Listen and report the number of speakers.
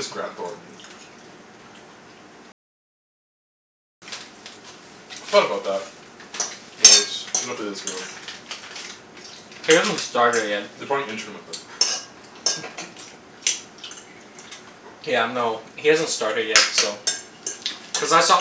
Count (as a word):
two